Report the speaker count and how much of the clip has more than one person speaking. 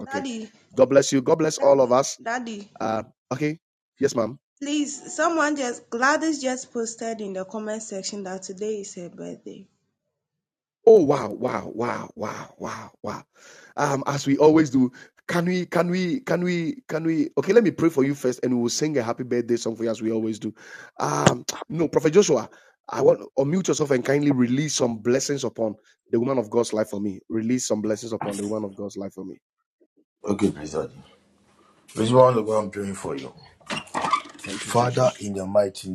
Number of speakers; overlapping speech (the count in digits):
3, about 4%